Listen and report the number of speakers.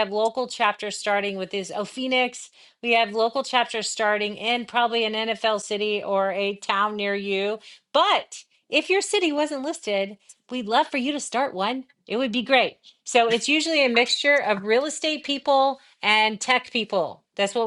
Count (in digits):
1